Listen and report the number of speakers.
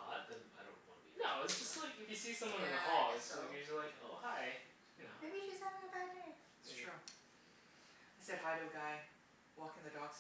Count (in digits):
4